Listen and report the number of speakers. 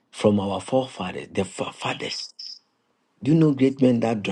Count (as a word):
one